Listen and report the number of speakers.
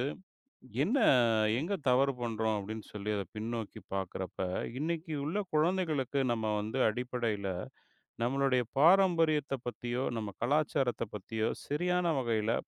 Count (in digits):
1